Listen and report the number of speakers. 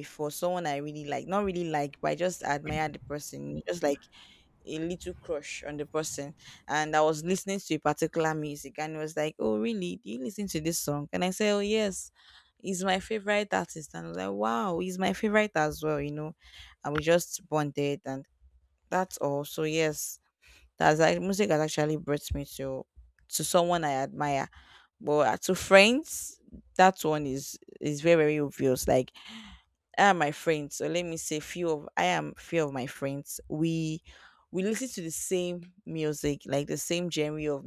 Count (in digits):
1